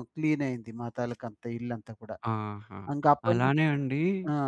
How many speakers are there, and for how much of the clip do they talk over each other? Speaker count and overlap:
two, about 5%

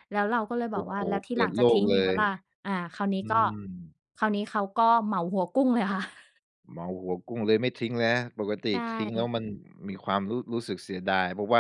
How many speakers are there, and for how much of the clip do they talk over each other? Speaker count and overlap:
two, about 12%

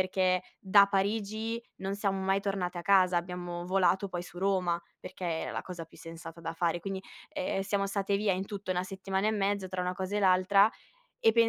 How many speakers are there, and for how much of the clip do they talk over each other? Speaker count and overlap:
one, no overlap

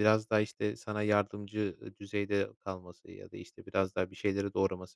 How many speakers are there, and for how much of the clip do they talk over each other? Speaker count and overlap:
one, no overlap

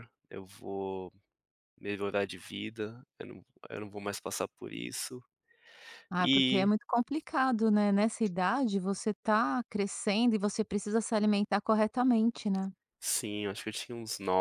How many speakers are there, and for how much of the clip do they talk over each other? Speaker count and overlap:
two, about 3%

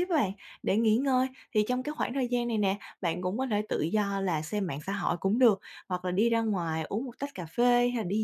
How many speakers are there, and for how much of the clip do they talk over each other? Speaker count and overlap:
one, no overlap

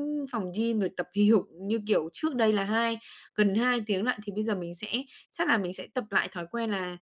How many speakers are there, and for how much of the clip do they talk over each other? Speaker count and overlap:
one, no overlap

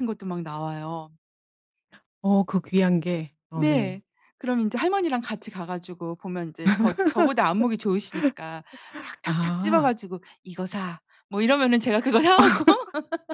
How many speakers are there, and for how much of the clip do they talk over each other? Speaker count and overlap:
two, about 8%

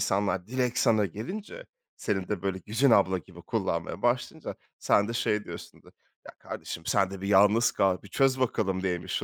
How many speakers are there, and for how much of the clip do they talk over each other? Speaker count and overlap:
one, no overlap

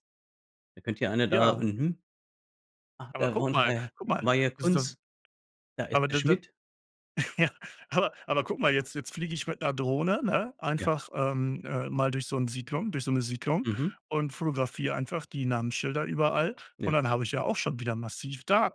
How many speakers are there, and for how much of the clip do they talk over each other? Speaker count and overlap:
two, about 14%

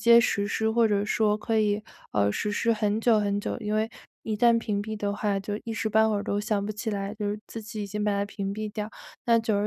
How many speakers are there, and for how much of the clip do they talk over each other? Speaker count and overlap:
one, no overlap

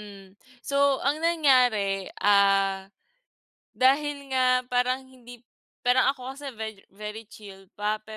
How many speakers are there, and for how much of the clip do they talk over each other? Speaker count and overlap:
one, no overlap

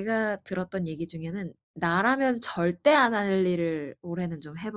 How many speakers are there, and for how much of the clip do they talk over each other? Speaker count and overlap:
one, no overlap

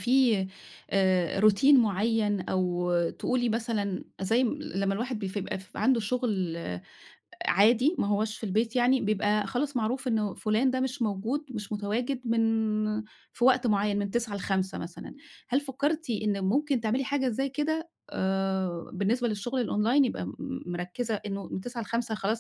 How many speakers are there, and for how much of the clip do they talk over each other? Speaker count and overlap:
one, no overlap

